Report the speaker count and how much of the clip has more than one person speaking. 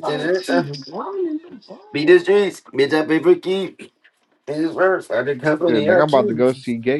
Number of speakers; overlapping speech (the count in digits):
3, about 24%